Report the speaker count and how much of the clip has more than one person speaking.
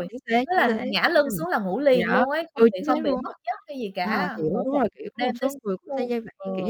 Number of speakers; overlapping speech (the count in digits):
2, about 59%